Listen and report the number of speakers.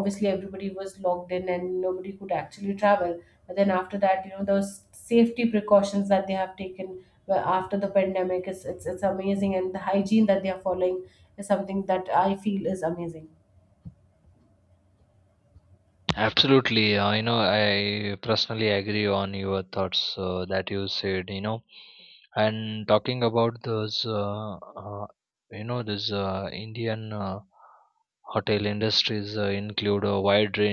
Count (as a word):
two